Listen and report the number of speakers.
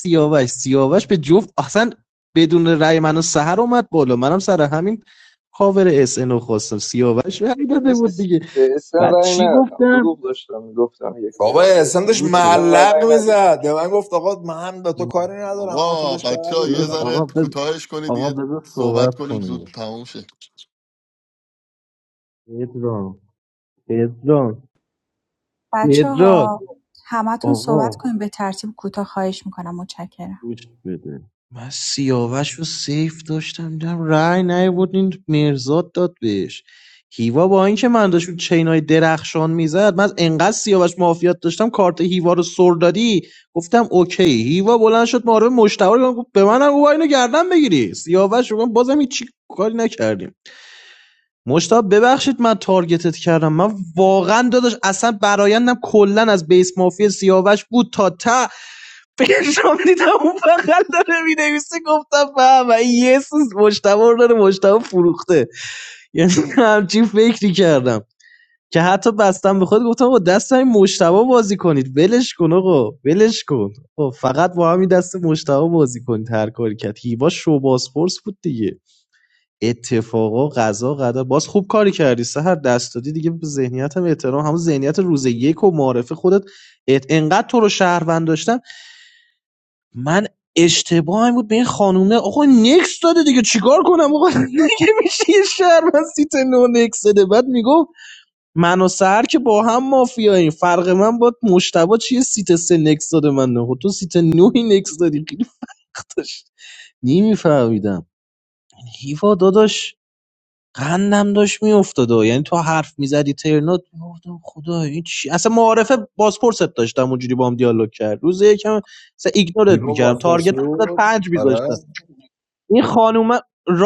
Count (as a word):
five